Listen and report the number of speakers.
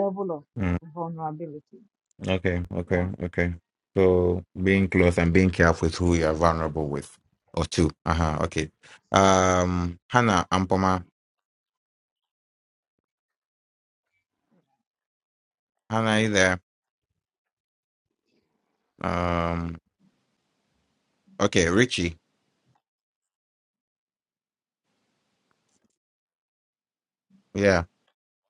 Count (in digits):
2